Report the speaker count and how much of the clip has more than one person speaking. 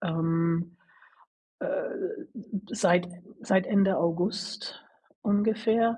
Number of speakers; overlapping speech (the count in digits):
1, no overlap